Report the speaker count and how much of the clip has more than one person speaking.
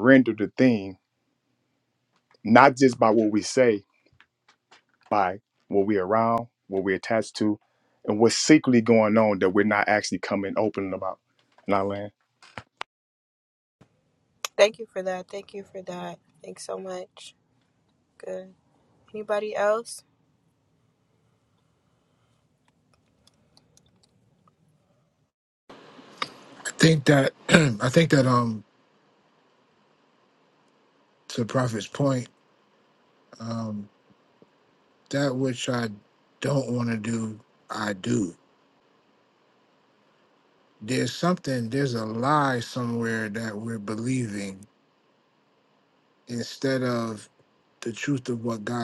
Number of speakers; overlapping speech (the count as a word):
three, no overlap